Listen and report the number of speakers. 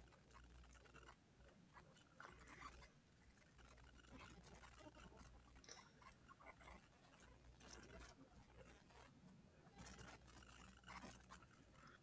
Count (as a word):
zero